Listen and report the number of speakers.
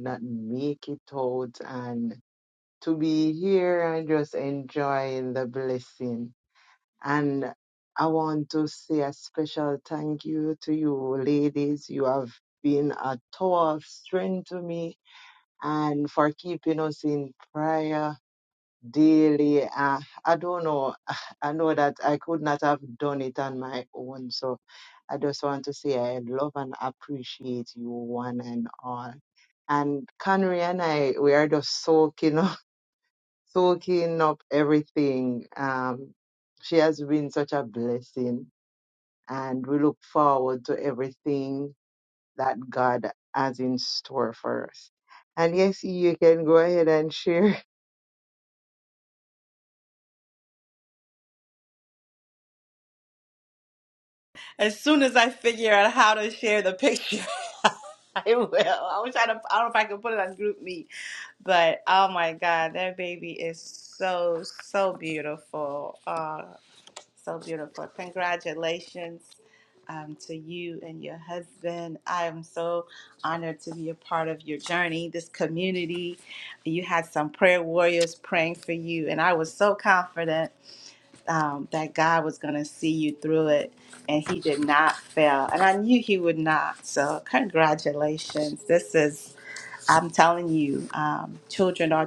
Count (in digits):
2